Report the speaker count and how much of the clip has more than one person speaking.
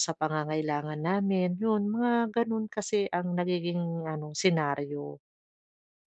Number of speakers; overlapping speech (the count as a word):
one, no overlap